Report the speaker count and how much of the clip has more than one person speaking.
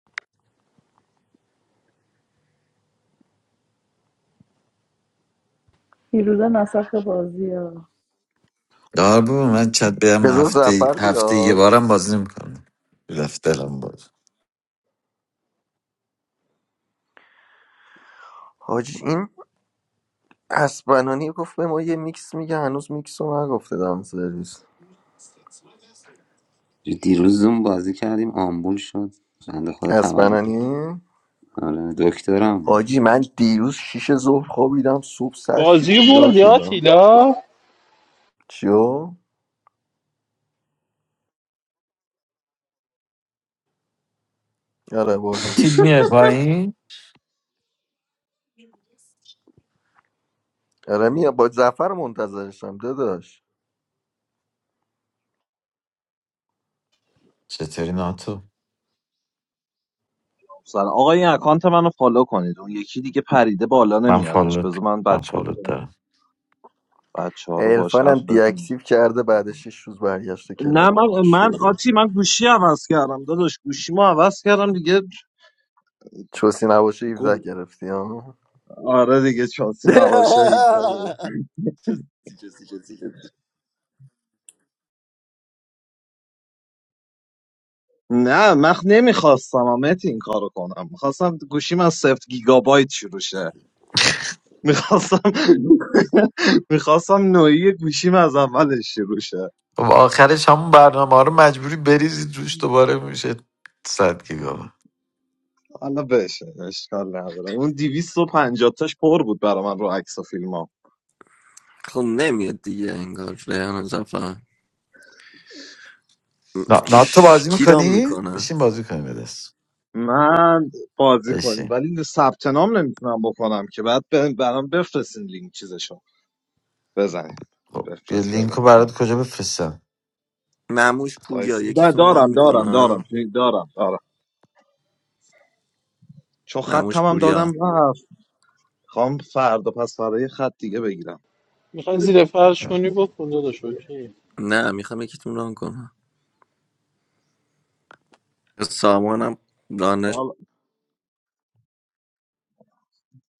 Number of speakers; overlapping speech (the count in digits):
6, about 8%